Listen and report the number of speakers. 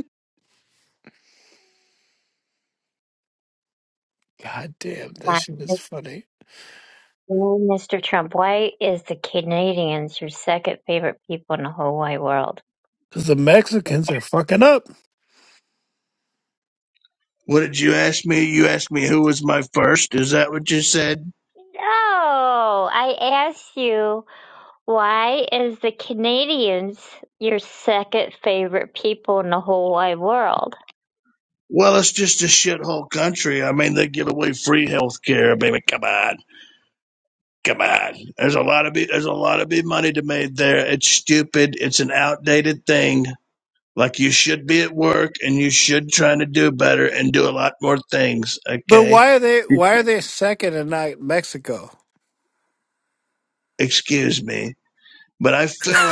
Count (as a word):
three